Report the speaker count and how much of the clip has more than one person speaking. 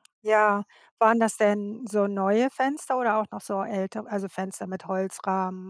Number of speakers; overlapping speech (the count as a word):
one, no overlap